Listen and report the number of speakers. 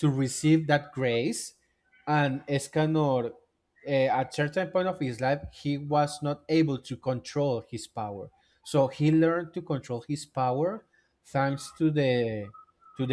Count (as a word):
one